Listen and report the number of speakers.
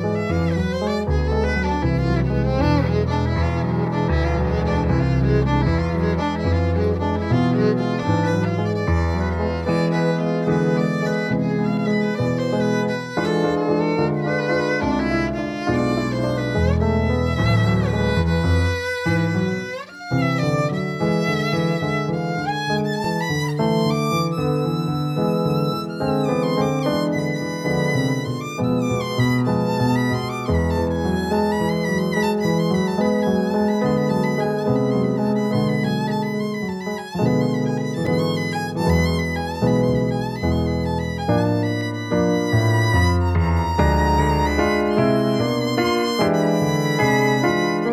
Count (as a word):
zero